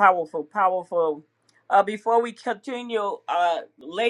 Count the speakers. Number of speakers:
1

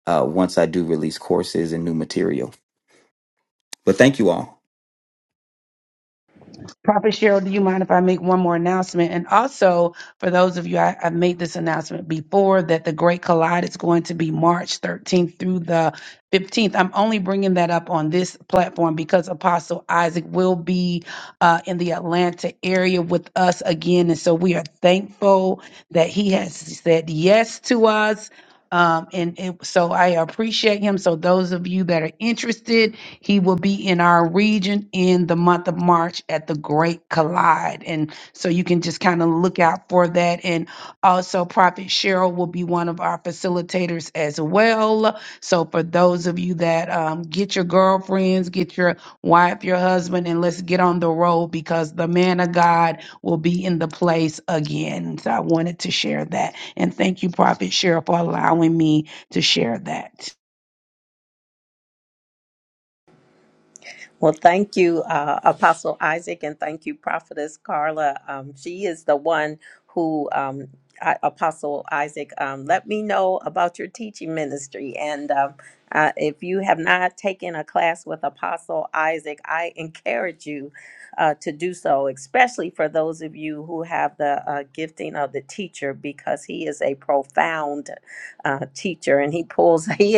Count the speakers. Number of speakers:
3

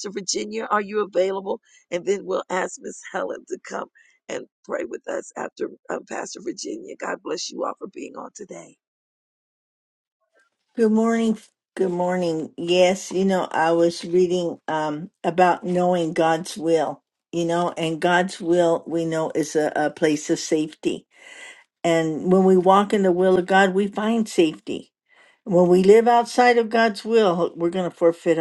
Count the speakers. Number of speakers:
2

